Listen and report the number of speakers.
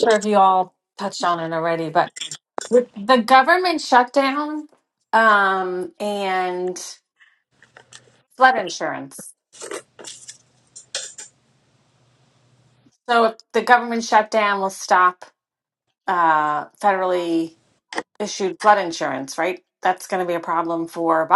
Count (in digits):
1